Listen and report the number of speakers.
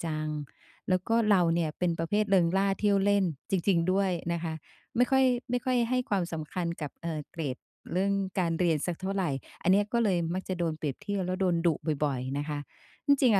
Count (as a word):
one